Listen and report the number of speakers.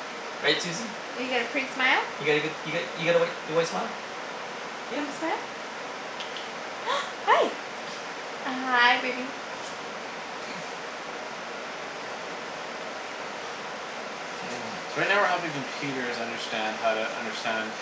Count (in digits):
3